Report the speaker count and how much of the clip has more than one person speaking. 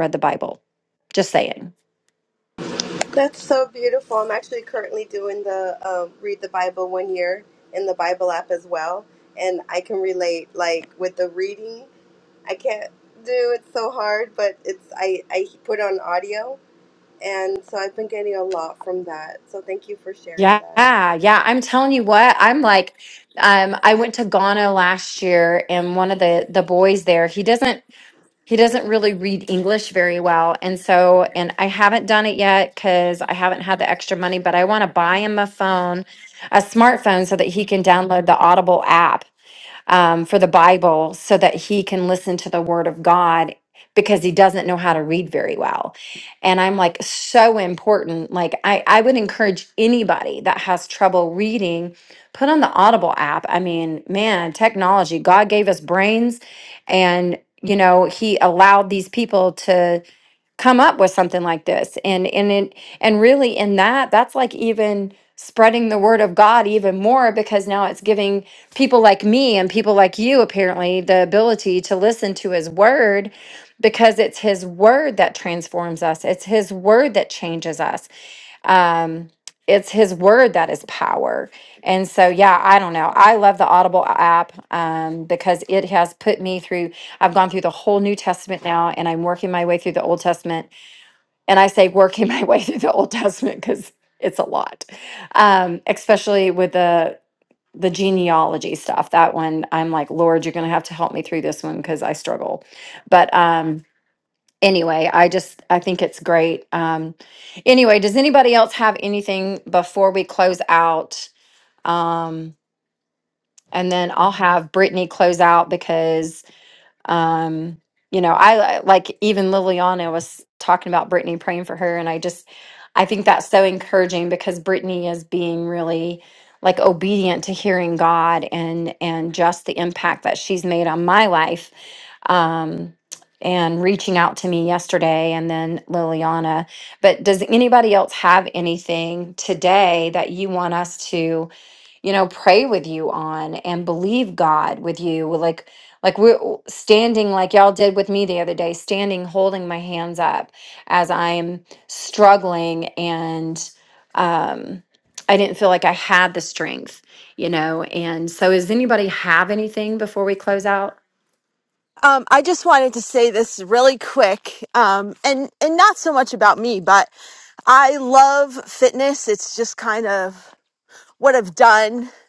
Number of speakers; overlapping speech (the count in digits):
3, under 1%